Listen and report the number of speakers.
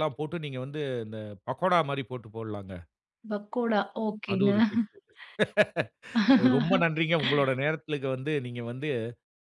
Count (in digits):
2